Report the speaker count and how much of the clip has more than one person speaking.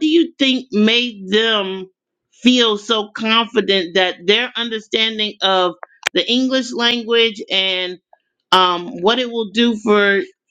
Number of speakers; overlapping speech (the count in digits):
1, no overlap